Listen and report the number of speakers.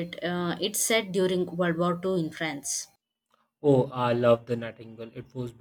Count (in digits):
2